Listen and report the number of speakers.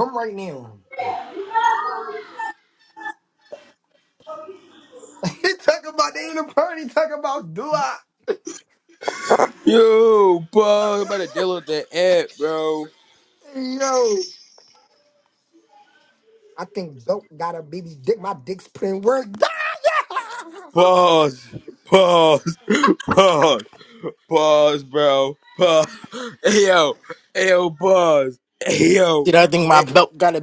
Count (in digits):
3